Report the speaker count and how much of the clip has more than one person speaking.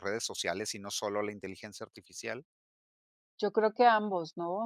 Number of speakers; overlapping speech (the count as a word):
two, no overlap